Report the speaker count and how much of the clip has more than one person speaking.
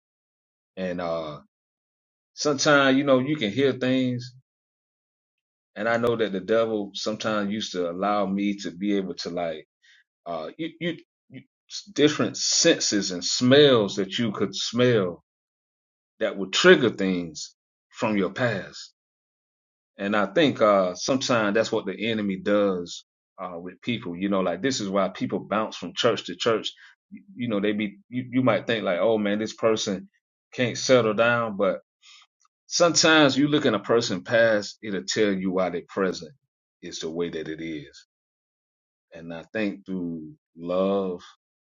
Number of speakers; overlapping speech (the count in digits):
1, no overlap